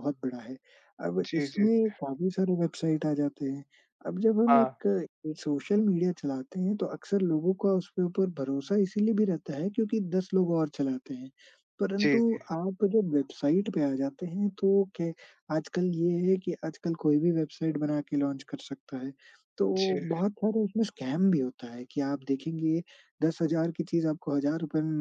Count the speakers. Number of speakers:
2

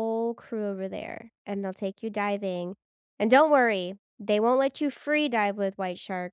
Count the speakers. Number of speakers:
1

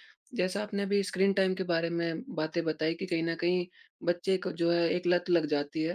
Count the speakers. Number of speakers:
1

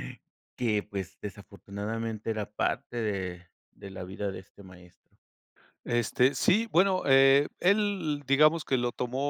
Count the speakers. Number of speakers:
2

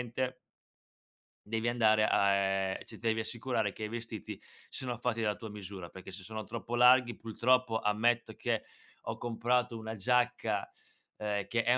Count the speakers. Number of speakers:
1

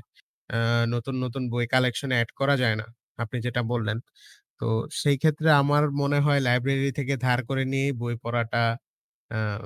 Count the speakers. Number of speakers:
1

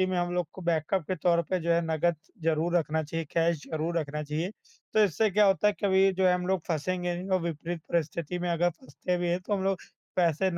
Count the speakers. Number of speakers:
1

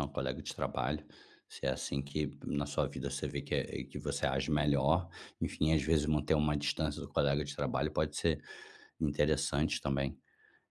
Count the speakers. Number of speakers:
1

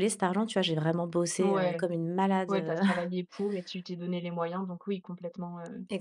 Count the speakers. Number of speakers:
2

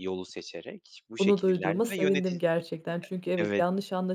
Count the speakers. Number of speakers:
2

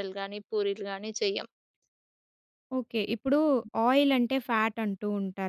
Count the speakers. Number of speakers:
2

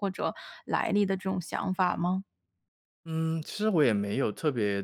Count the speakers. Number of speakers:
2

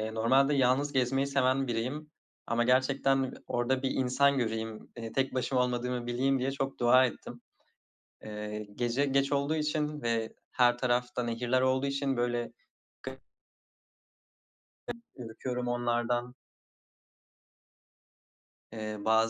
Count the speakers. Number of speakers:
1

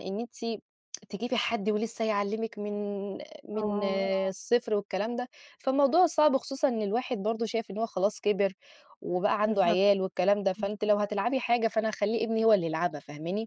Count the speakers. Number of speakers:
2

